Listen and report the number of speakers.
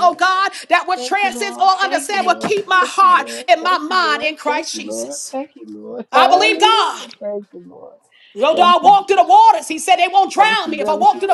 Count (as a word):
two